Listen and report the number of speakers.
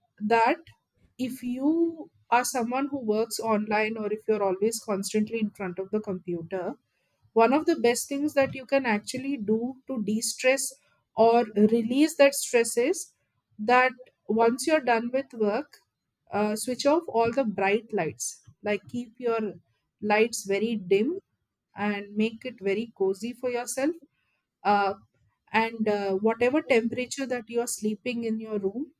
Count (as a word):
one